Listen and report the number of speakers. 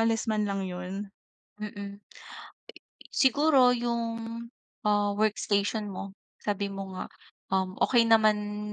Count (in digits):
2